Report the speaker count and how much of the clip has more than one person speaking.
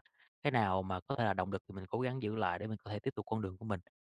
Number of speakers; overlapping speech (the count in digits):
1, no overlap